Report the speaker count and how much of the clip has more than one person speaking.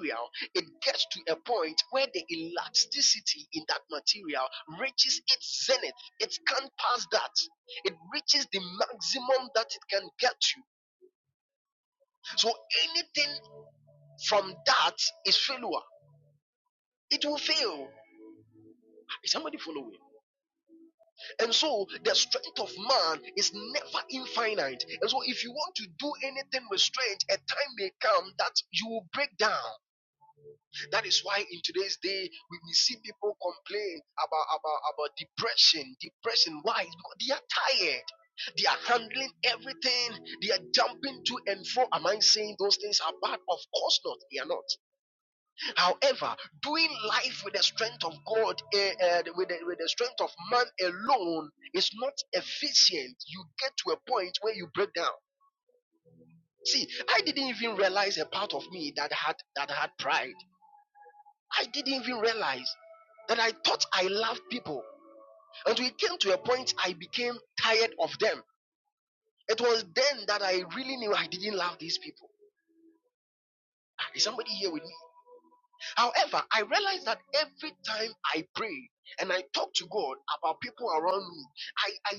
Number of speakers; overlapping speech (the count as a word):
one, no overlap